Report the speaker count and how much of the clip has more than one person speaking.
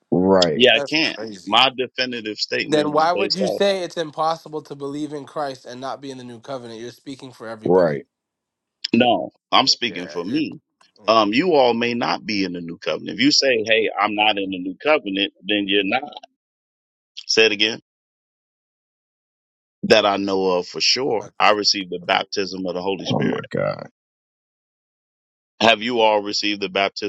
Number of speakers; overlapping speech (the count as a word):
three, about 13%